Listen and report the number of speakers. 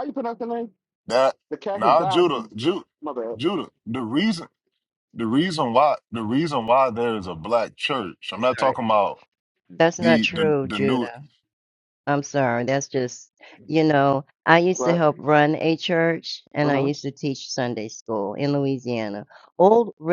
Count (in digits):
3